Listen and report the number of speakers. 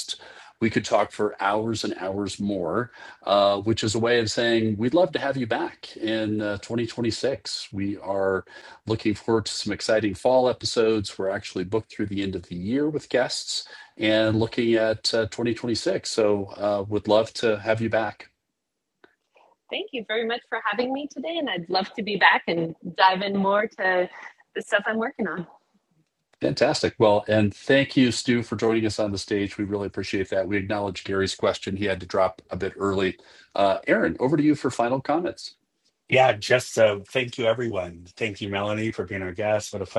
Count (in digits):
3